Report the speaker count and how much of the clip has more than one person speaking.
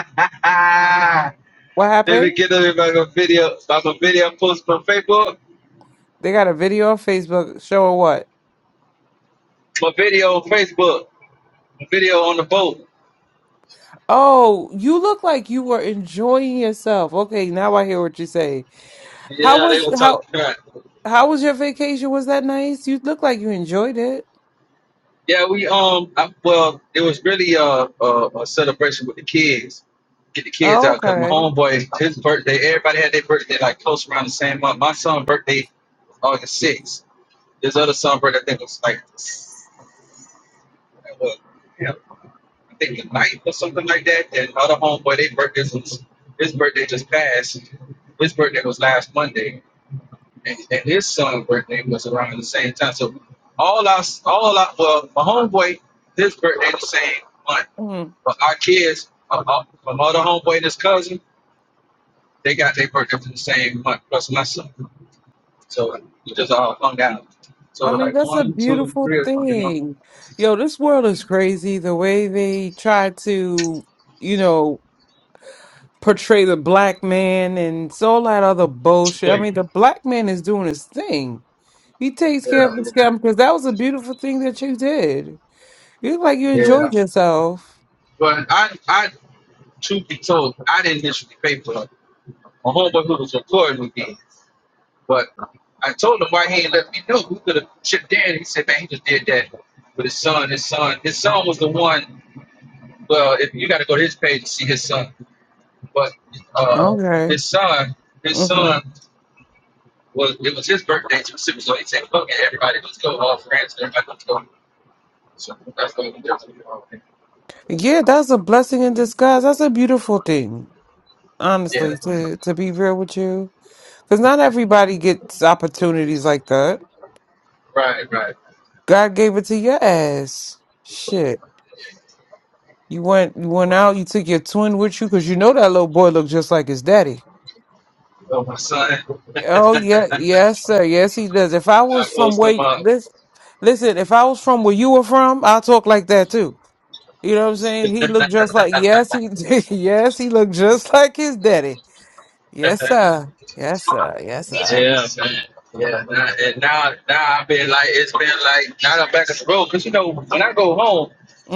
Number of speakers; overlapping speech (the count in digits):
2, about 4%